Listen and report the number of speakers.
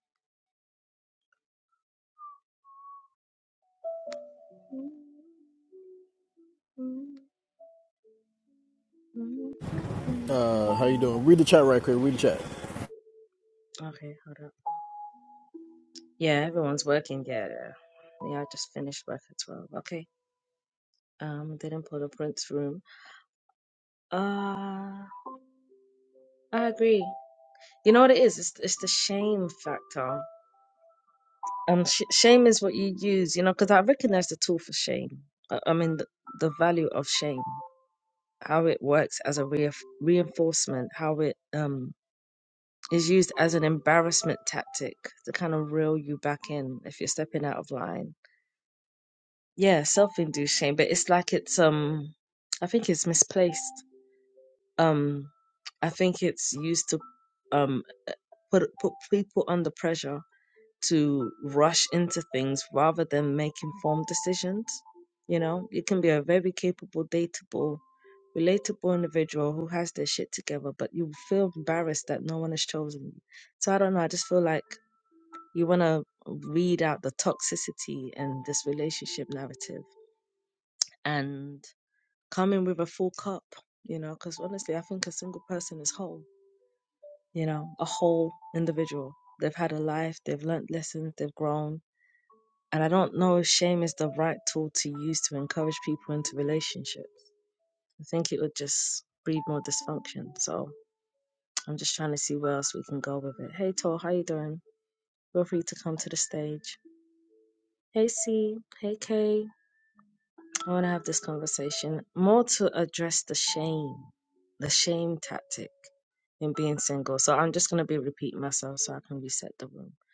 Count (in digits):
2